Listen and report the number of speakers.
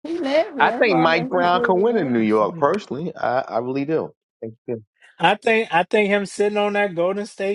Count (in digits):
3